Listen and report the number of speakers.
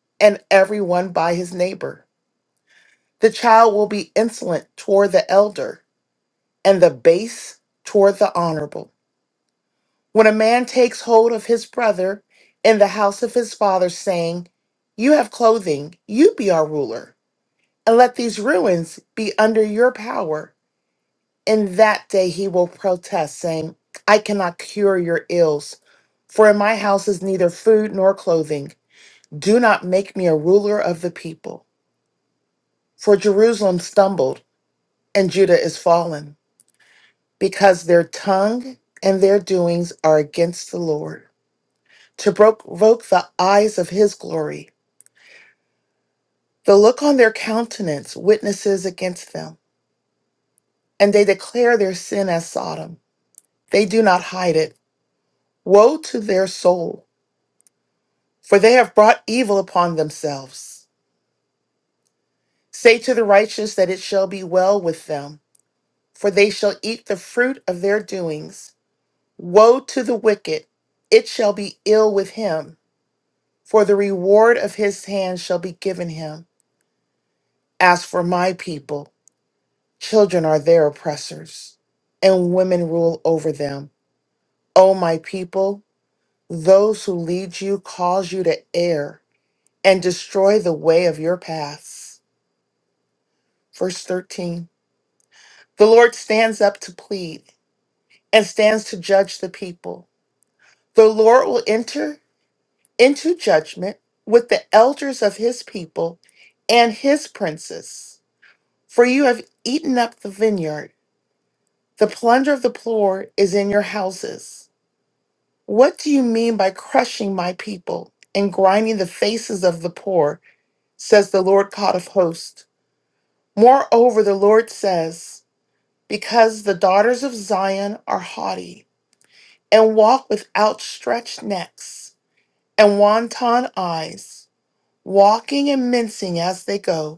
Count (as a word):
one